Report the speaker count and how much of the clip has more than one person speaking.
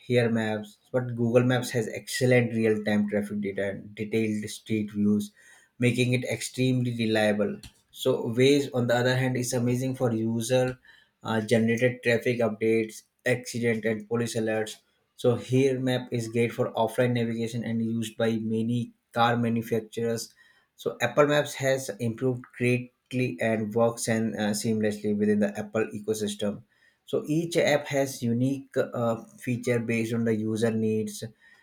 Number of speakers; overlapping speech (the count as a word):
one, no overlap